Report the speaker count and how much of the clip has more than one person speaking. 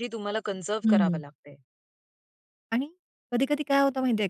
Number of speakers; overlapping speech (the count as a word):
two, about 8%